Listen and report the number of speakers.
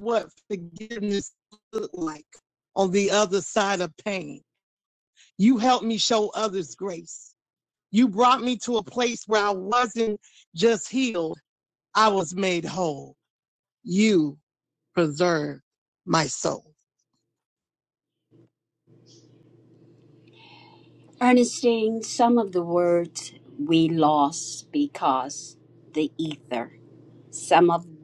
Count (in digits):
2